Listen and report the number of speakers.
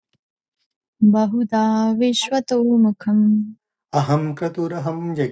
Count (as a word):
two